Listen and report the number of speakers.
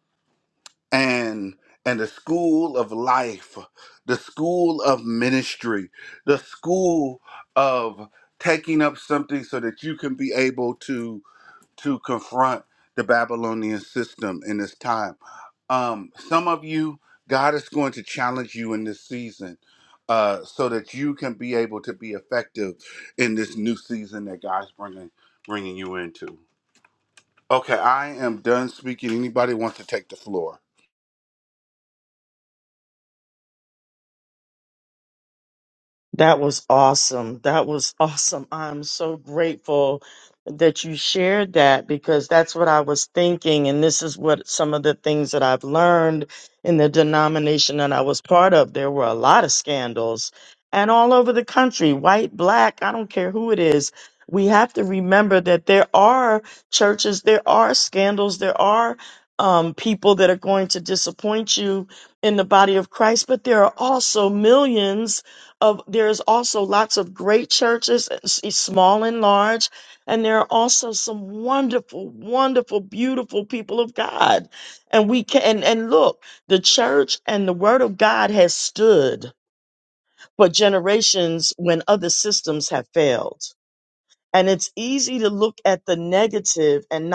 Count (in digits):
2